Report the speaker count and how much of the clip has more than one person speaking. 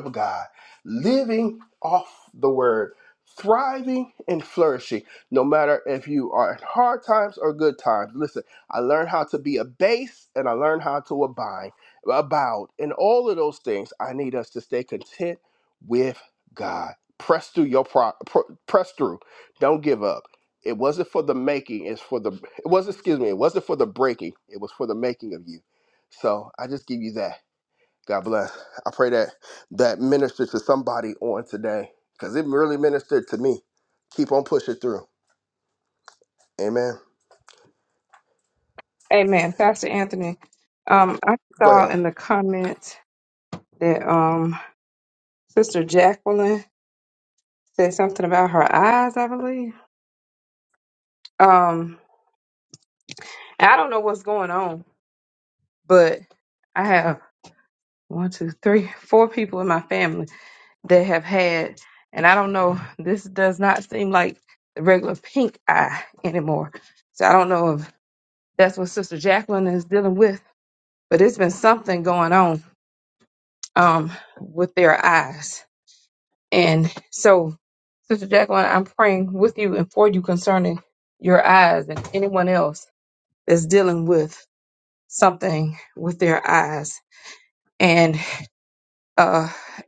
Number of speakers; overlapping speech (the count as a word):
two, under 1%